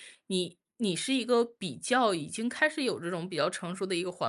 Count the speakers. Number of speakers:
one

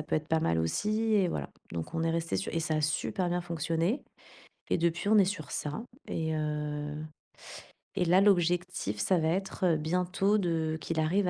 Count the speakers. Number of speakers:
one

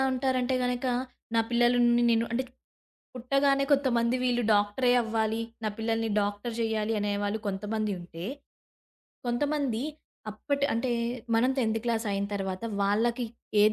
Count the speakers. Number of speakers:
one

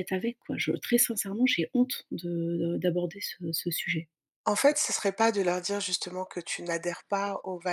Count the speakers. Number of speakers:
two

